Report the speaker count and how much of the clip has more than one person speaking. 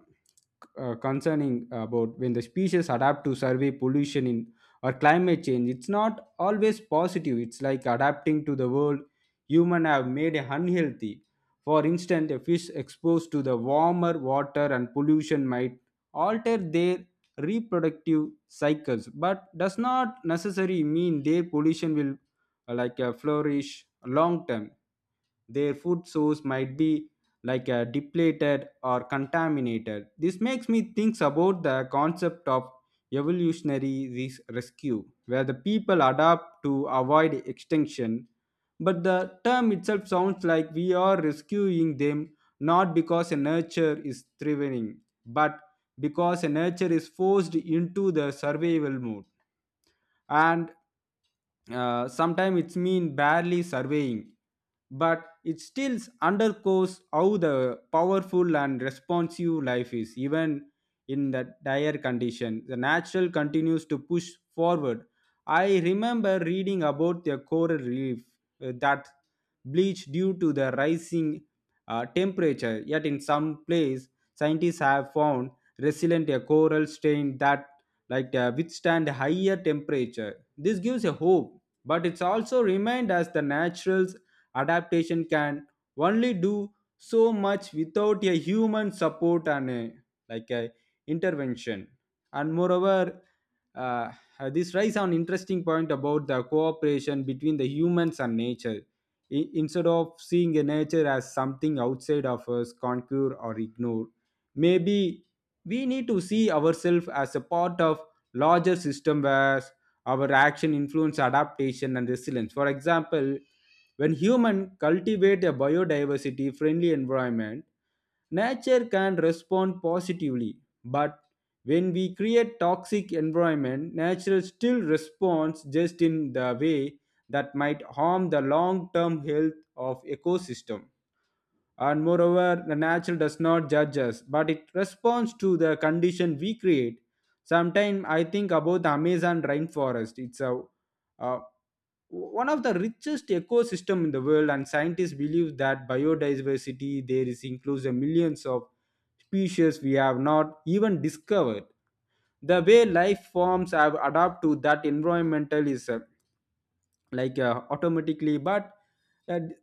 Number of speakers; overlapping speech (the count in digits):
1, no overlap